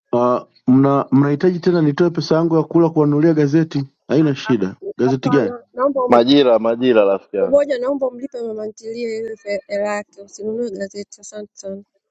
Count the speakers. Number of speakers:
three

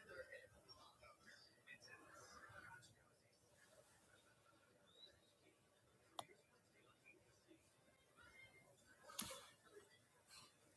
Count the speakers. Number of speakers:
zero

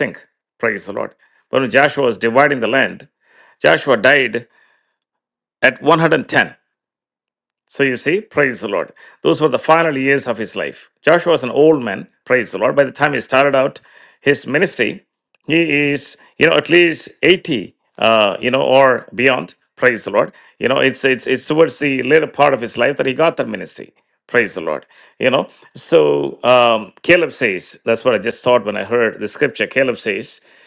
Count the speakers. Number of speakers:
one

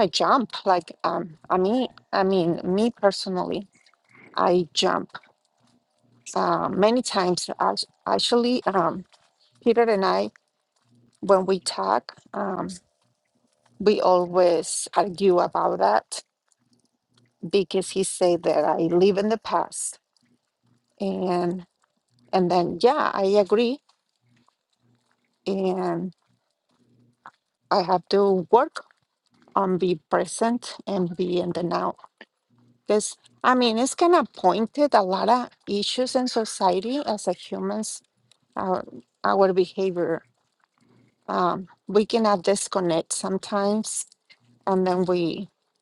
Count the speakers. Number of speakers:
one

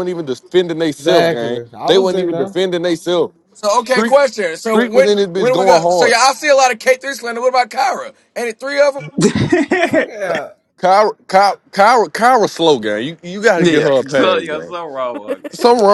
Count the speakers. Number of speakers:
four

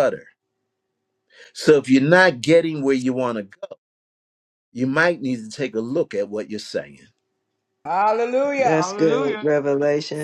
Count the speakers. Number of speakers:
three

